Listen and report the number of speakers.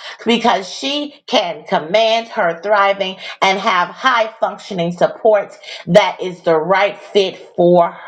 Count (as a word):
one